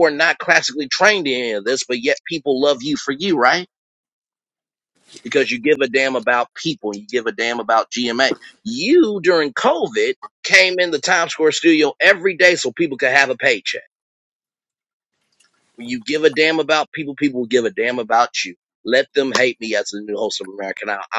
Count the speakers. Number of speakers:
one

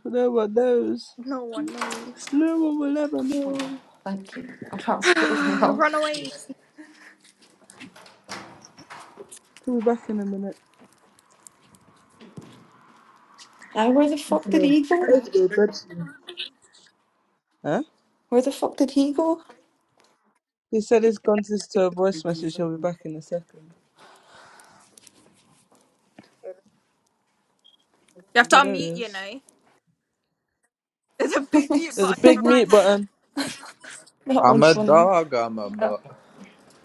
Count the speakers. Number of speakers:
four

